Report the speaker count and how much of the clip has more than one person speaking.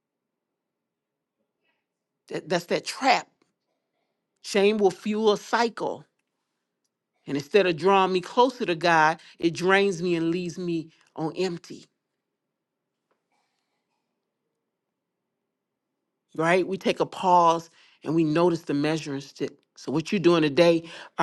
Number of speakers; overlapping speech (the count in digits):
1, no overlap